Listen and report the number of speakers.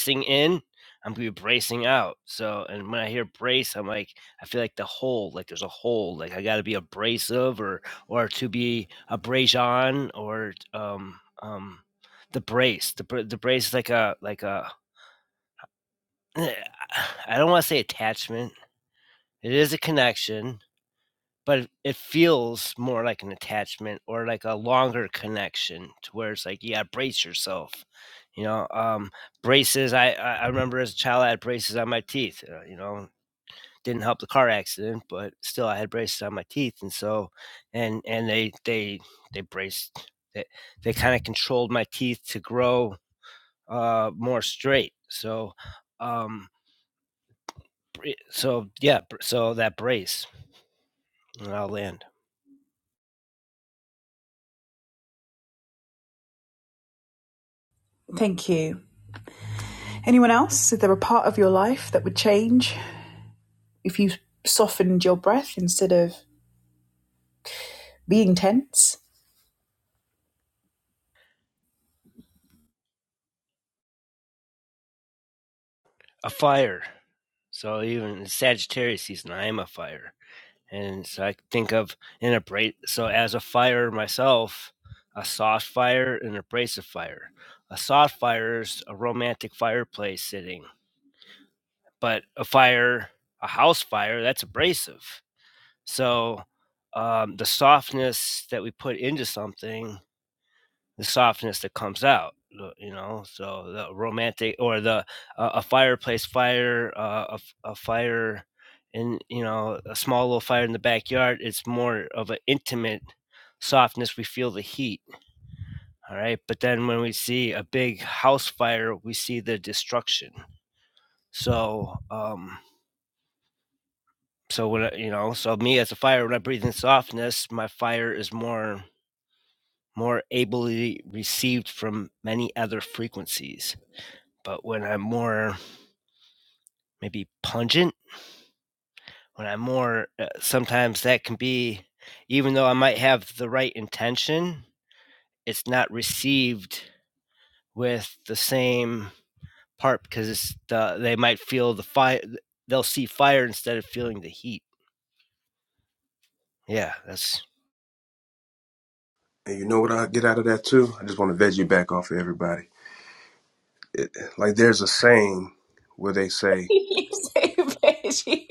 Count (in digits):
3